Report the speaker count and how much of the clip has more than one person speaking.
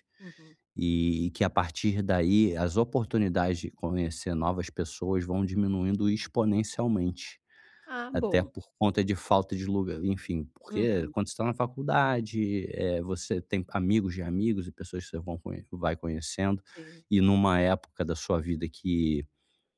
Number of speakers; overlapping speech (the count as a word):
two, about 4%